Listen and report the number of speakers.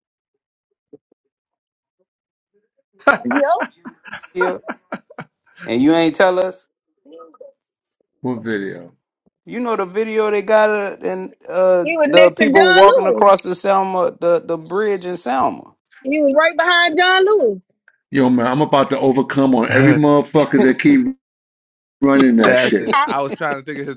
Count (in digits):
4